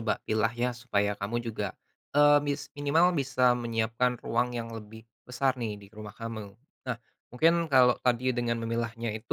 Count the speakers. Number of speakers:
one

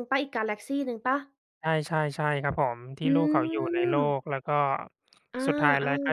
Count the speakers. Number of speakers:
two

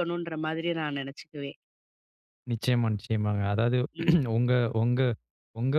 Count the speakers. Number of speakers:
two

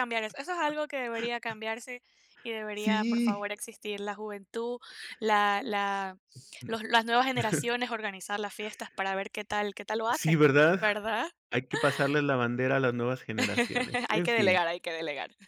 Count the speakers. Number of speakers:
two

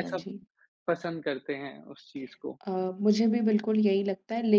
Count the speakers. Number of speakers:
two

